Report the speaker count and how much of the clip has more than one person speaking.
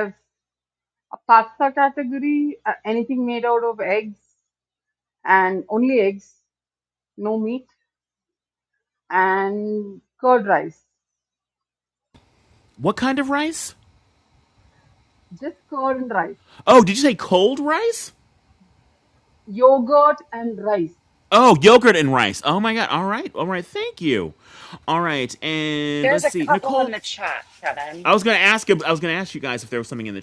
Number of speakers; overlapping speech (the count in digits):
3, about 3%